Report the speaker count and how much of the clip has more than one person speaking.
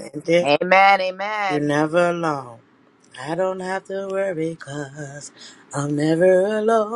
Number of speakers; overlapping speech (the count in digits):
2, about 3%